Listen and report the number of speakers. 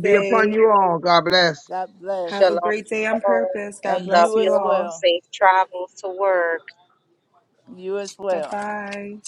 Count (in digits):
4